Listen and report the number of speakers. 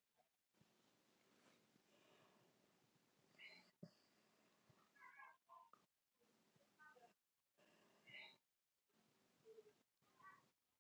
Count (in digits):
0